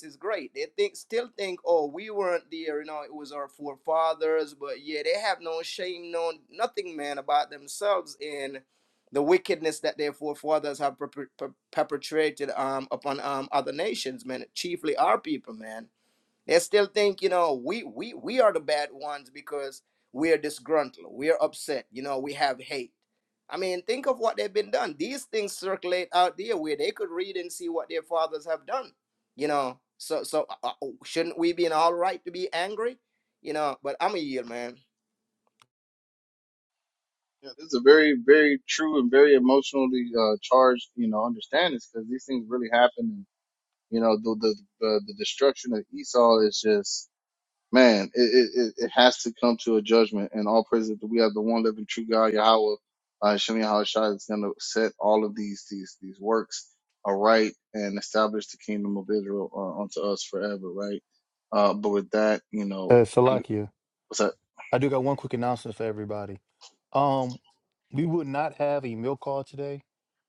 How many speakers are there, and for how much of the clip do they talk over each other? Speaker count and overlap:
3, about 1%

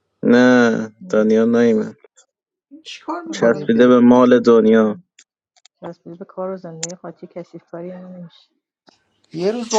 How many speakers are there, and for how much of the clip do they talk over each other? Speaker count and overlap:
3, about 10%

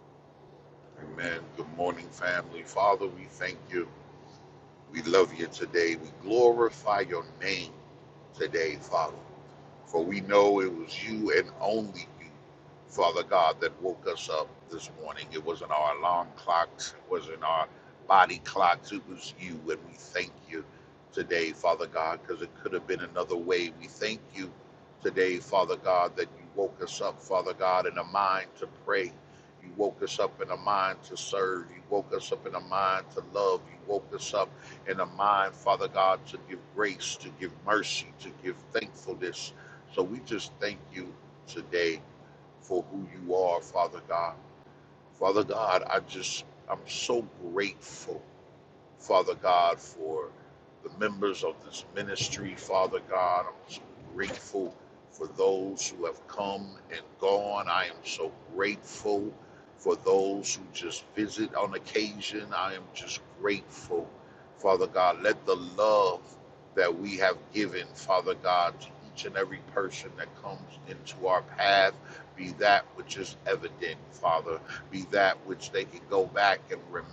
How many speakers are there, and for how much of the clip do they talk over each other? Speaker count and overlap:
1, no overlap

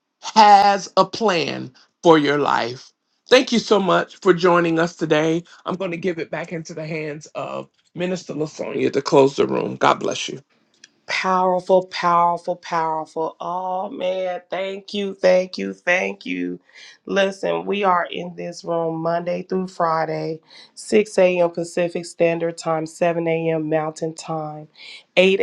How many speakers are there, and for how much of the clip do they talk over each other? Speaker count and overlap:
2, no overlap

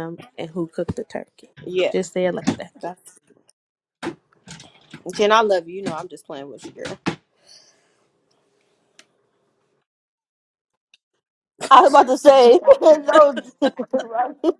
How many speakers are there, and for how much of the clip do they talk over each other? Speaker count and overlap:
3, under 1%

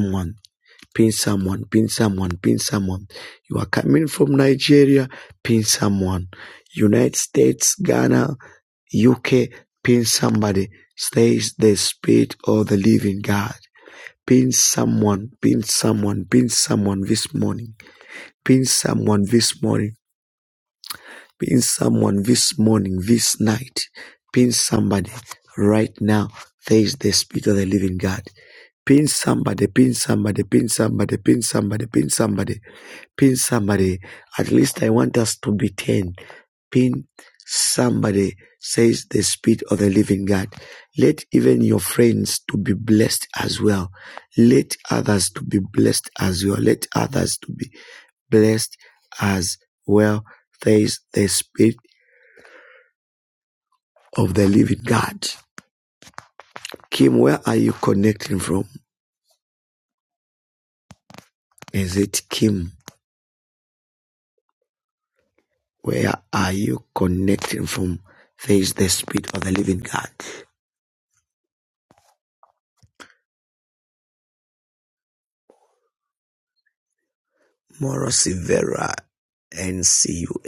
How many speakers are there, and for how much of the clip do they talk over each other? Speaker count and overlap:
1, no overlap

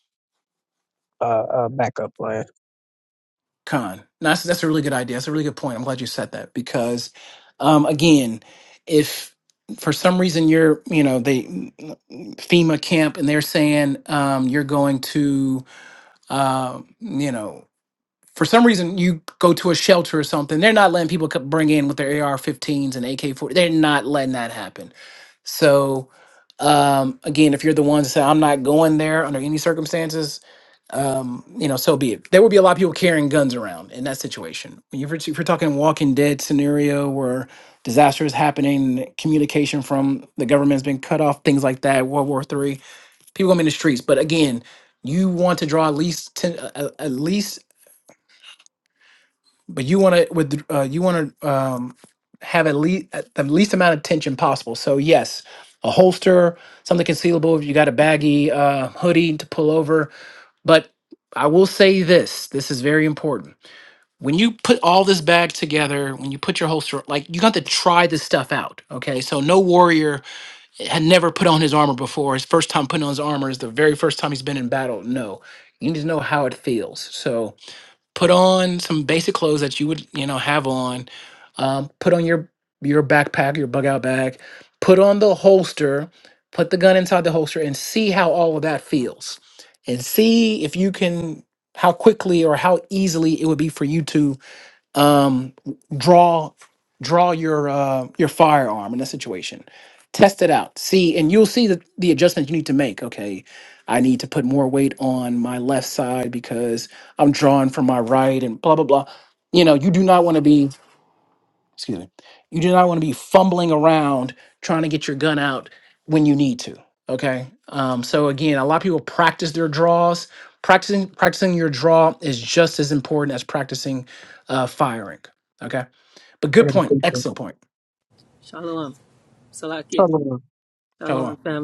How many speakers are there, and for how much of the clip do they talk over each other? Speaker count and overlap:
3, about 1%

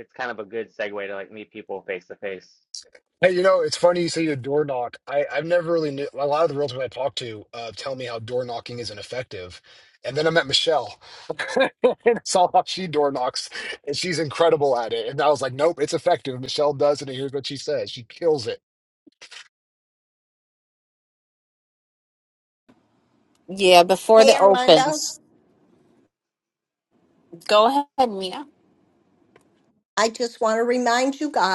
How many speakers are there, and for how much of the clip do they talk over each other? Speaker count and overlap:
4, about 2%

